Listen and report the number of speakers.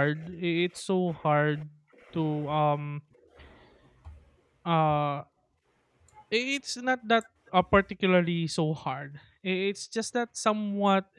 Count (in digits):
1